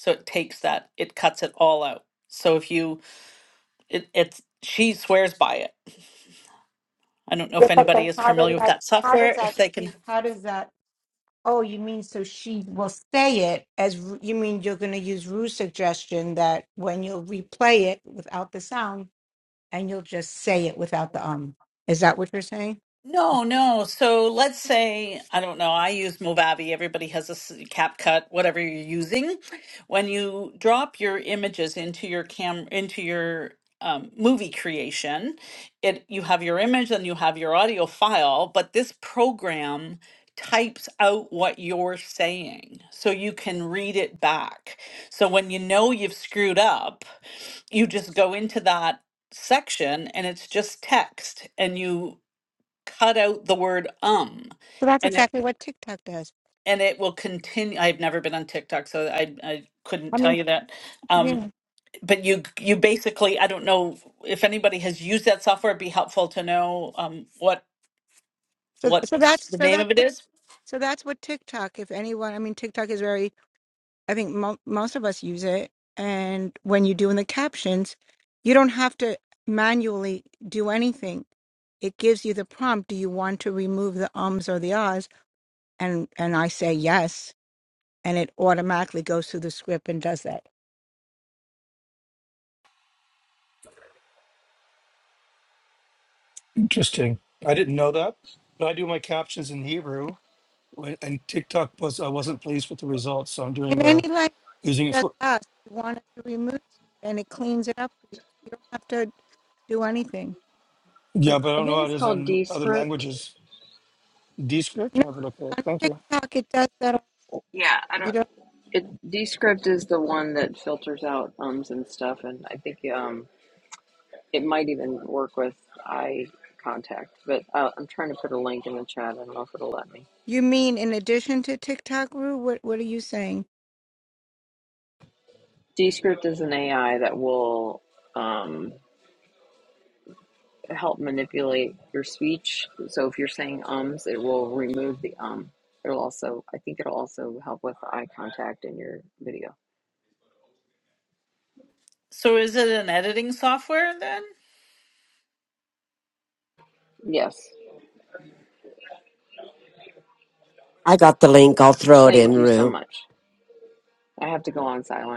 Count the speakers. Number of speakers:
five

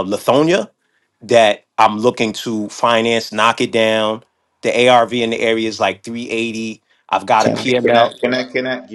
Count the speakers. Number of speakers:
two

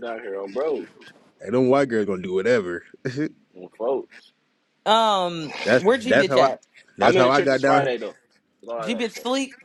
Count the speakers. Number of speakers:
three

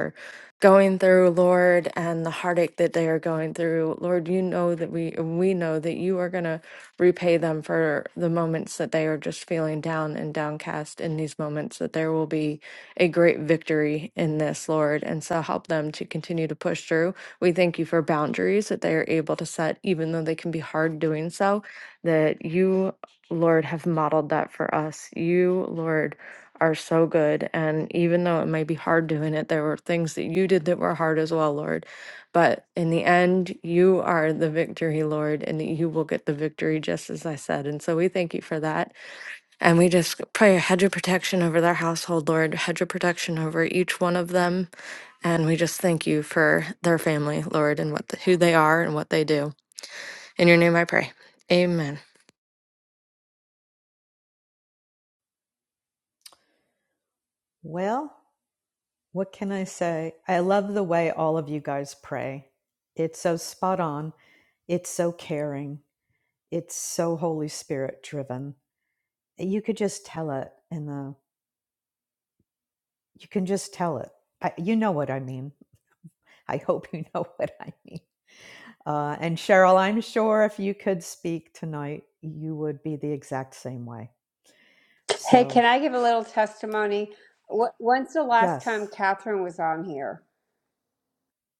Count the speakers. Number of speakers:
three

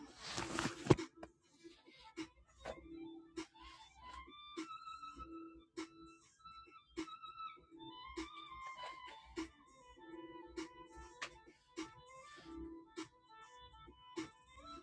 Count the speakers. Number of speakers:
zero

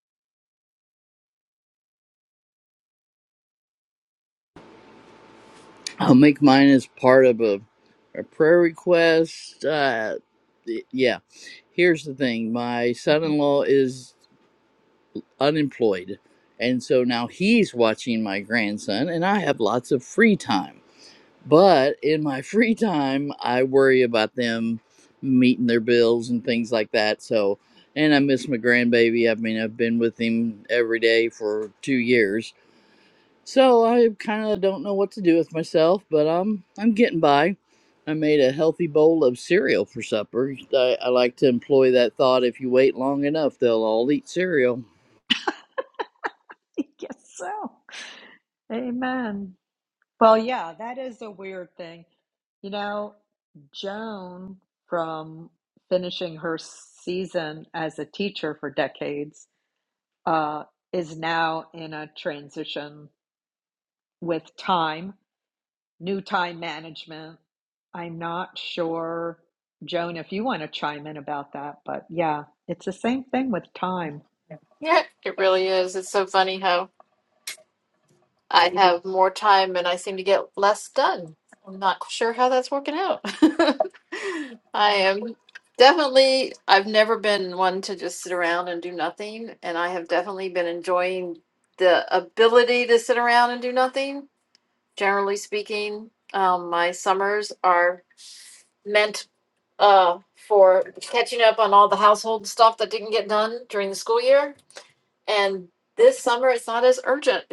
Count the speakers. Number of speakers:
three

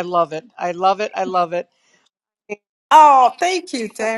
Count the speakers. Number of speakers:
two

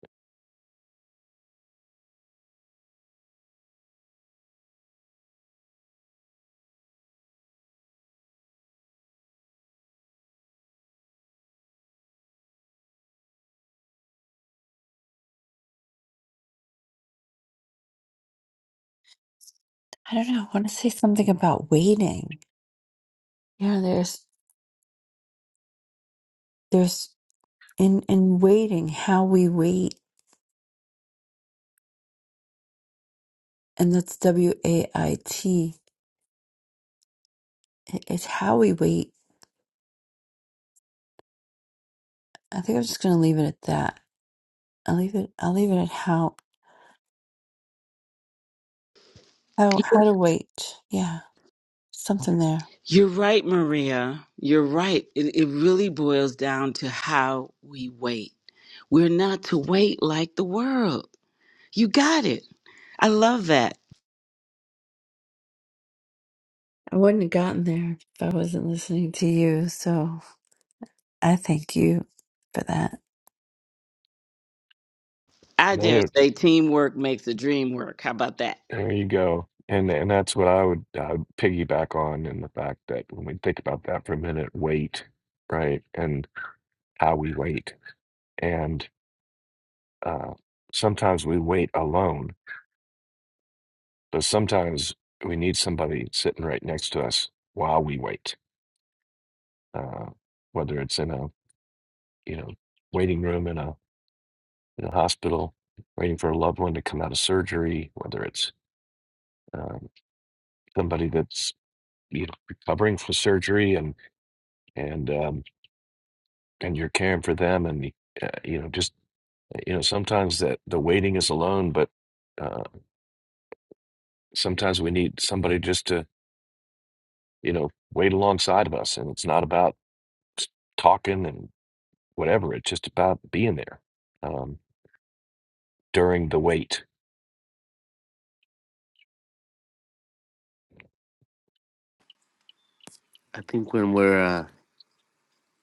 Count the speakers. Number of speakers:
four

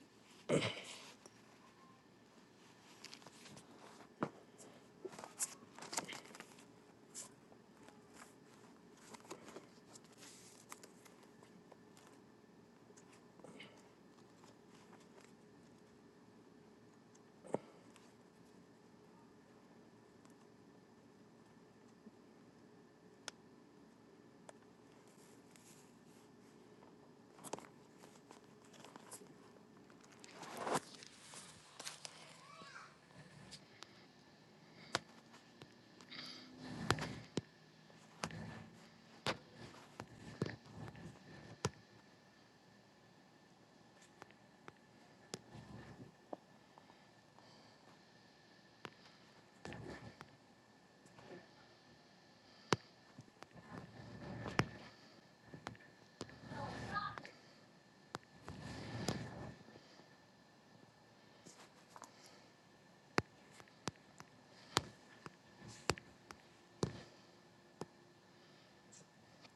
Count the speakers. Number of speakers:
zero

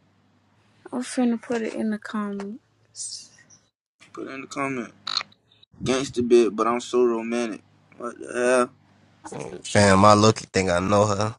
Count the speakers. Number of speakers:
three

